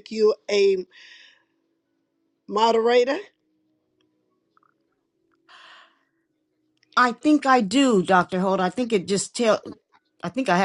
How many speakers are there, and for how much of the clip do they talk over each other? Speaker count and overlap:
2, no overlap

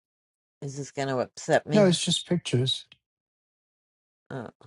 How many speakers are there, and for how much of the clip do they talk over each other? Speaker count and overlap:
2, about 3%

